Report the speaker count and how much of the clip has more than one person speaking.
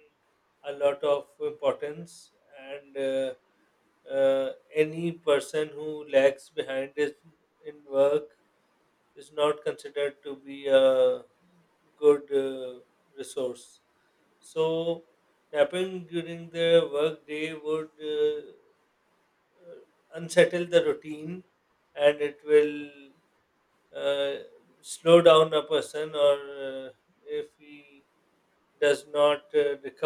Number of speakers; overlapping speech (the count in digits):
1, no overlap